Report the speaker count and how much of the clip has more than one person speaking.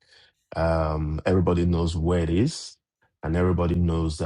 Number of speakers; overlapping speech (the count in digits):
1, no overlap